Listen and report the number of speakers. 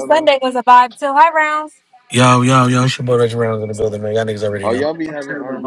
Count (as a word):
three